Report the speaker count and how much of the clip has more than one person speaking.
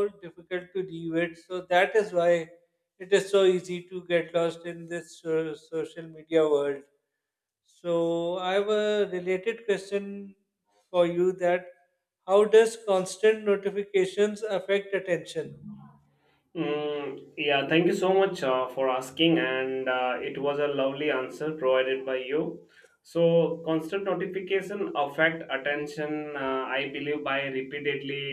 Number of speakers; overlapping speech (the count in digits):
2, no overlap